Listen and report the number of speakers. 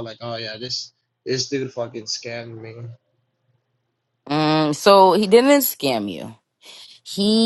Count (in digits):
2